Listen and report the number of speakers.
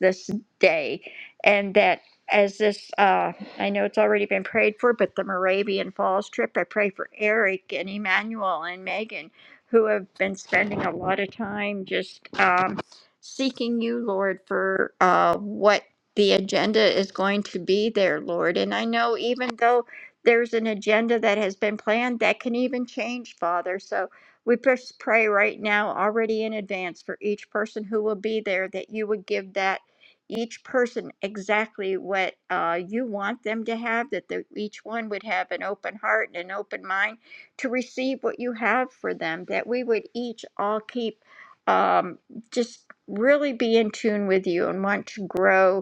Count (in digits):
1